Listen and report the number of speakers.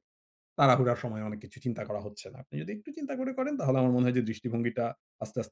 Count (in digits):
1